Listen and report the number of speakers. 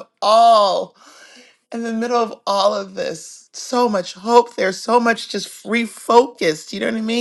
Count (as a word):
one